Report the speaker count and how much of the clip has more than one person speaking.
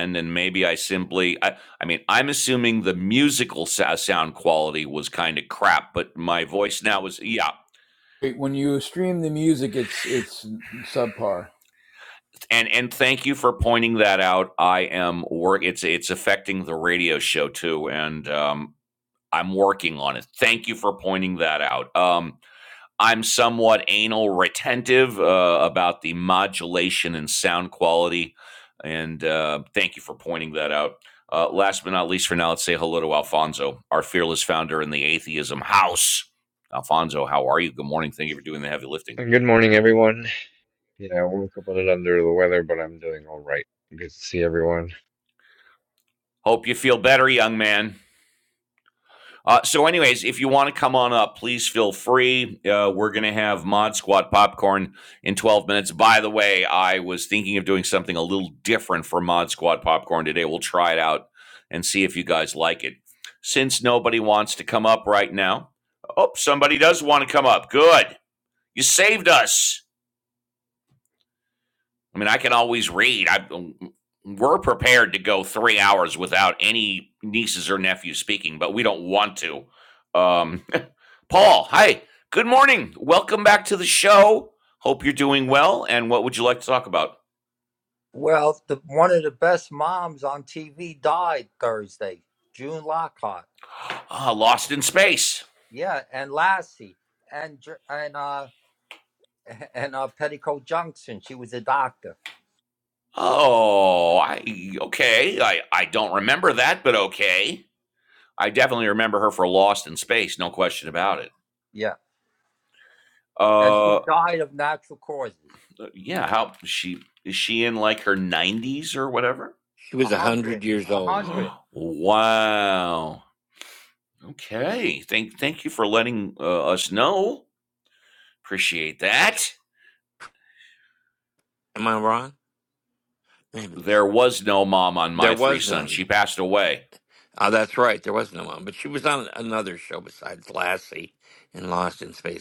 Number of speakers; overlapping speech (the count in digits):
5, about 2%